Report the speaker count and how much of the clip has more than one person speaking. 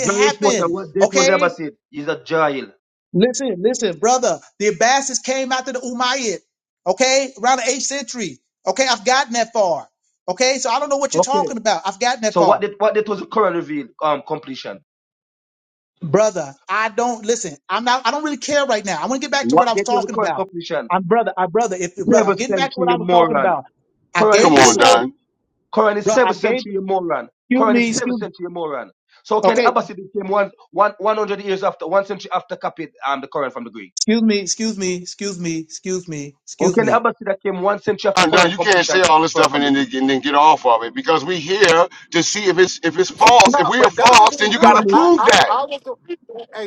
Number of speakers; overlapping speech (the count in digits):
4, about 24%